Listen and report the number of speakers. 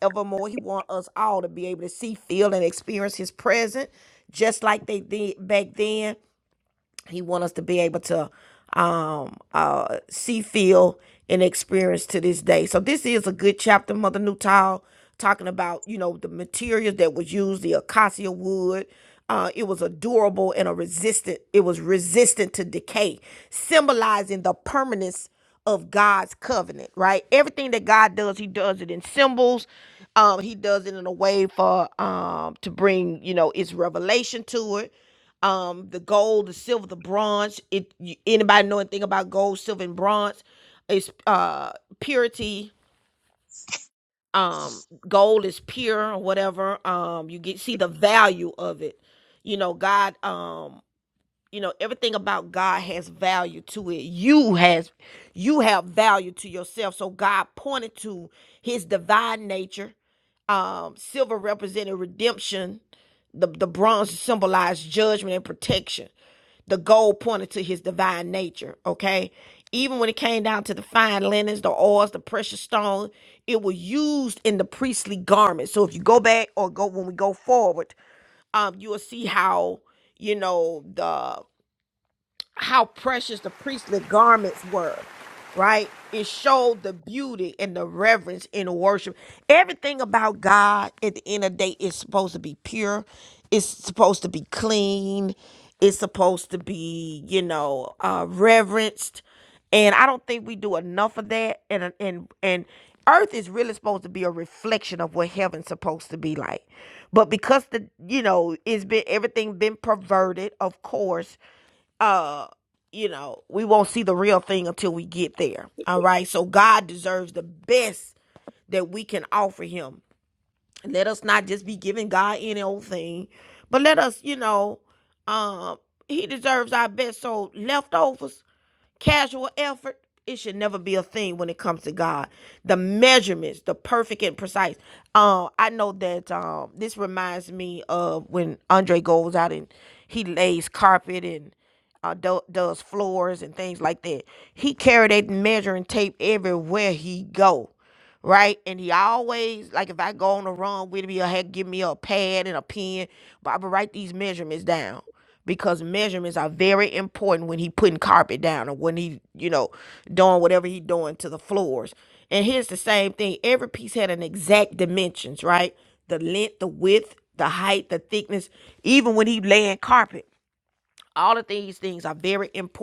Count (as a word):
one